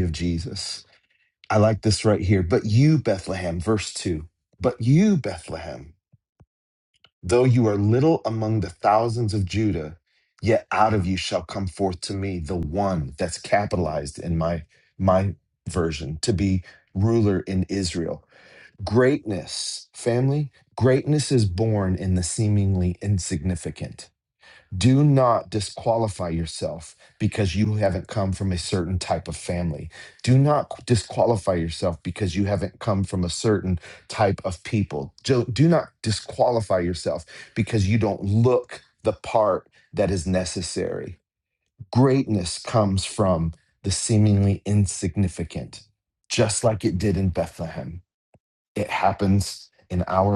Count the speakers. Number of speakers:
one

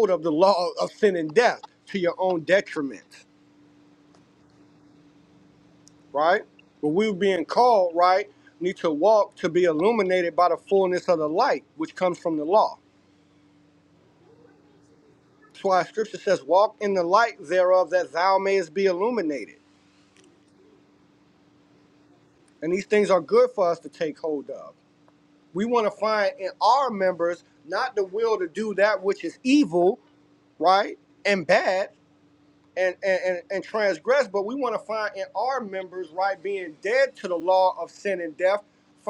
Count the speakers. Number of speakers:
one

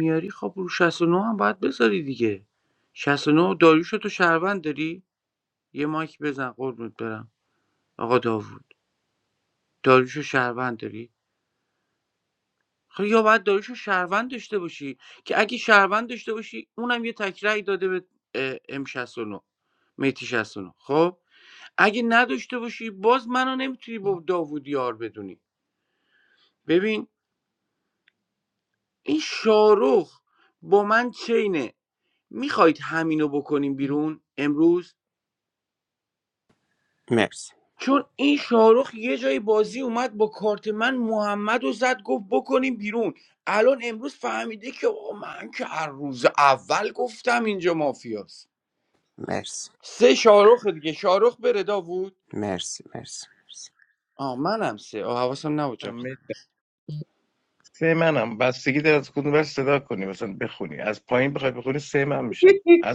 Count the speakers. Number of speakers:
three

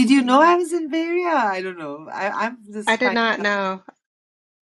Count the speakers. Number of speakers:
two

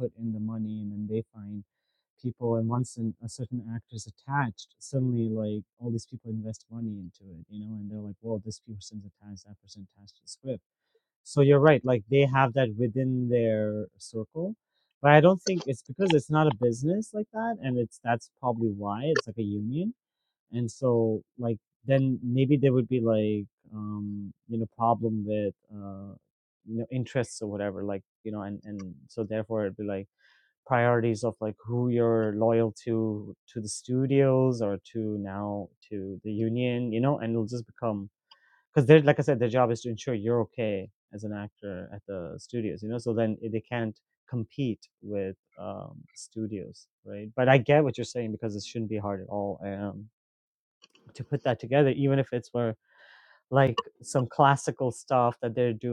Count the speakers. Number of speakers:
one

